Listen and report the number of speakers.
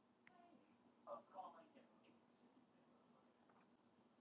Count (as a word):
zero